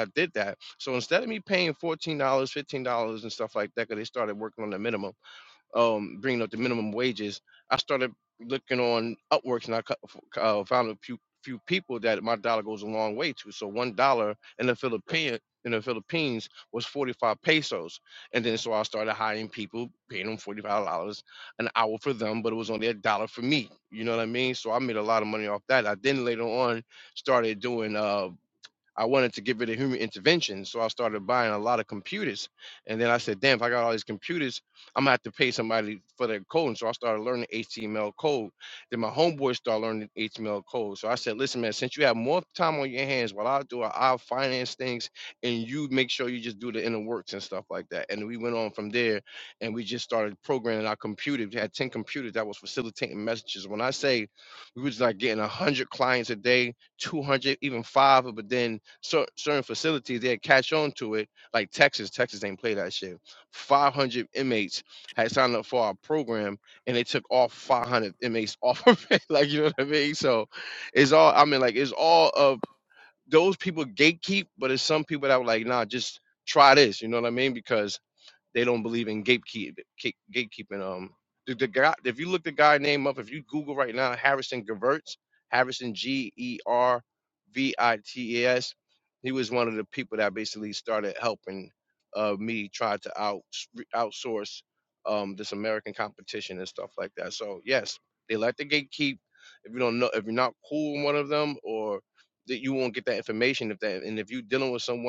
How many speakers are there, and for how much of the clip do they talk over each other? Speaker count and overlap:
1, no overlap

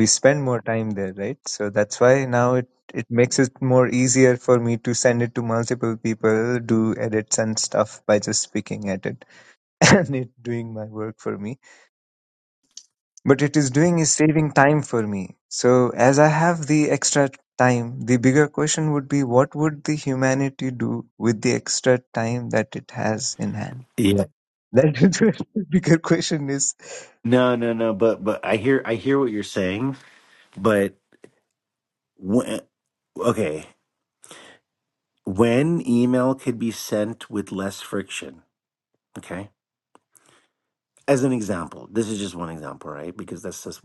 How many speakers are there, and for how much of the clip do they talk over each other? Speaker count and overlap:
2, no overlap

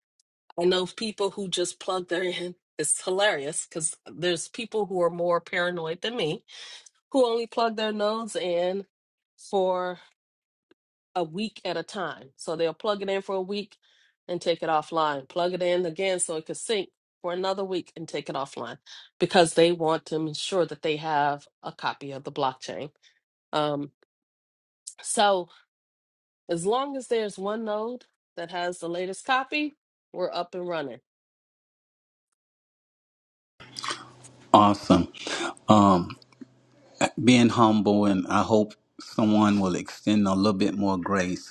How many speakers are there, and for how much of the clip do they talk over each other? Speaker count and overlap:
2, no overlap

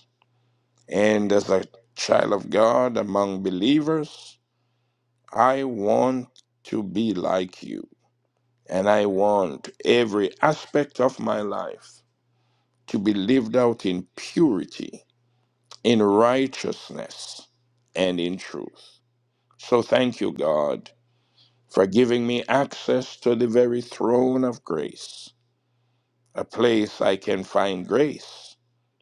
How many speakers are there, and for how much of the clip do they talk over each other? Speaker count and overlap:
1, no overlap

